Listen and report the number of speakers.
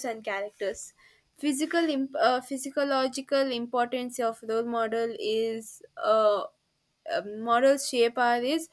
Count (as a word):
one